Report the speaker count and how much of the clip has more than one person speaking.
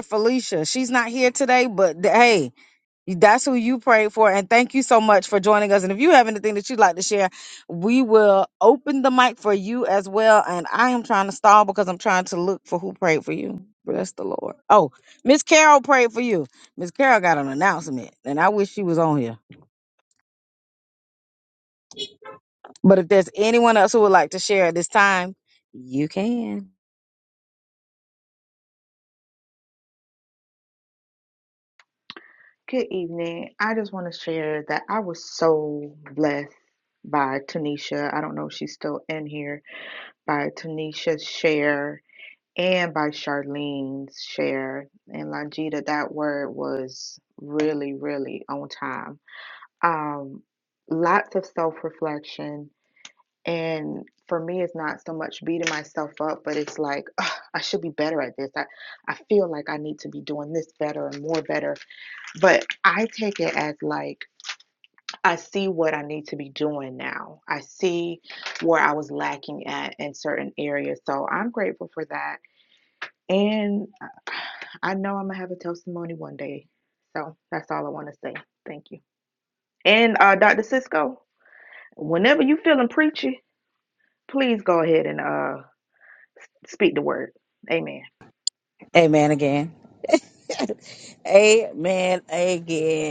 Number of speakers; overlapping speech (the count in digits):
2, no overlap